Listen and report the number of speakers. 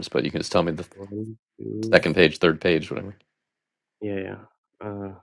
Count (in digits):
2